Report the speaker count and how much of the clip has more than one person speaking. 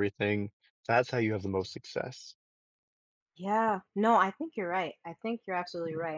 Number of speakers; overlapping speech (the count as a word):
two, about 1%